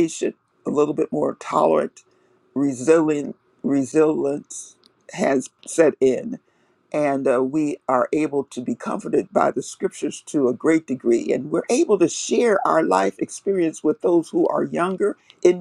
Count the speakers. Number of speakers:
1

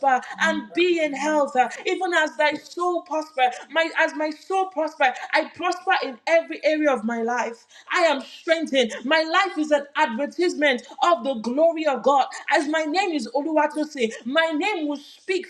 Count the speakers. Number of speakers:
1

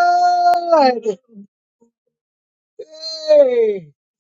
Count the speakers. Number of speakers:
1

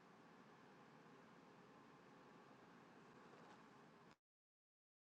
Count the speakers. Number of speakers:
0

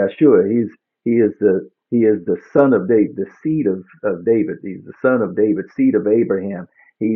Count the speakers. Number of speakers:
1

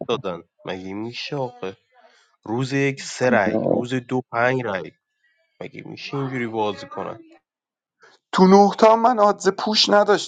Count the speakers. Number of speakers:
2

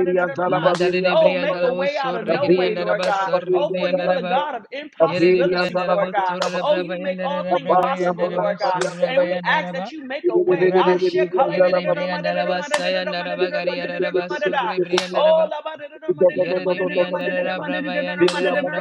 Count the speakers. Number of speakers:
3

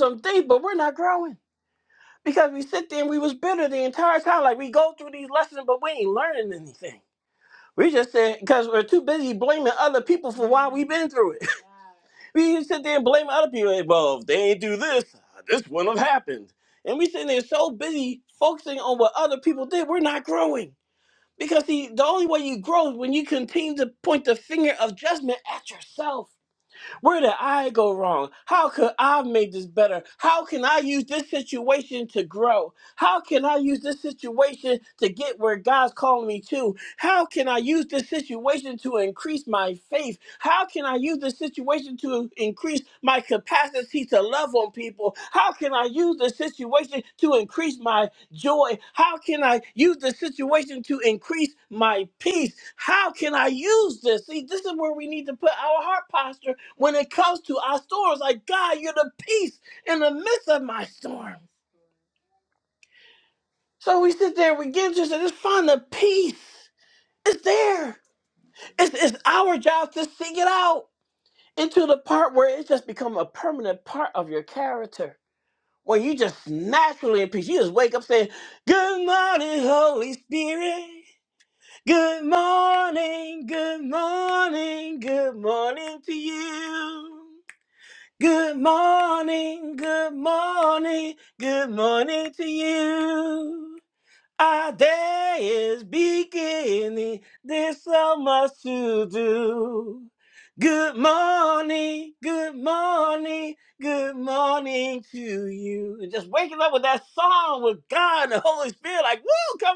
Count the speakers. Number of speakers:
1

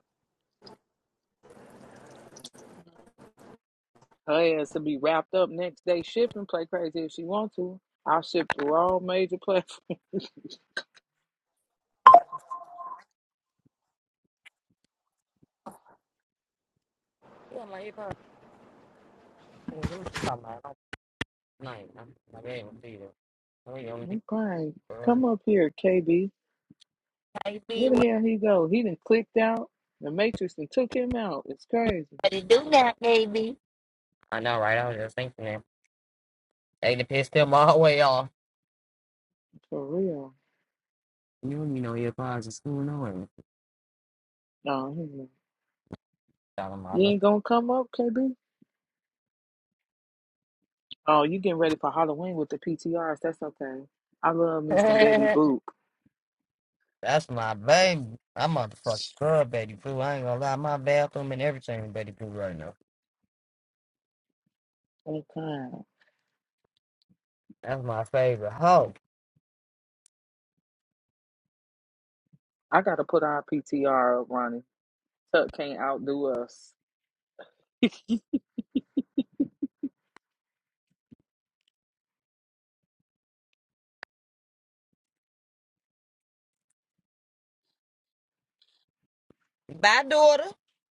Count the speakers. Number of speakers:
2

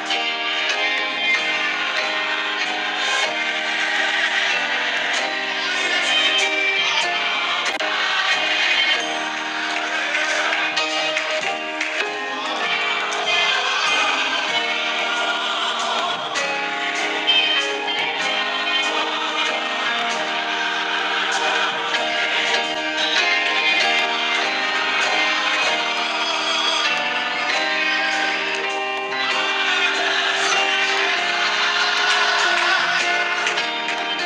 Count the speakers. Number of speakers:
0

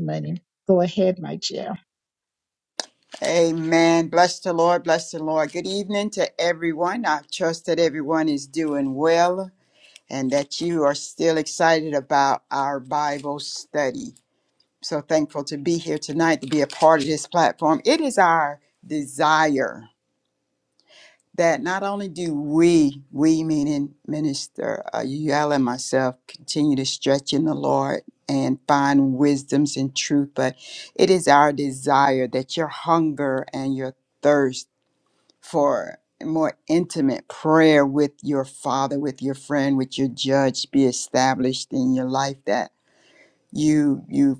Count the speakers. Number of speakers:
2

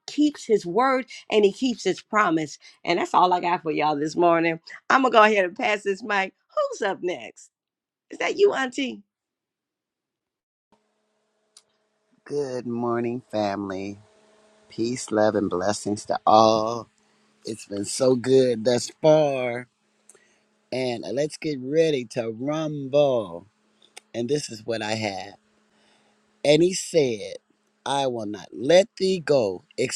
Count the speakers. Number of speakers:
2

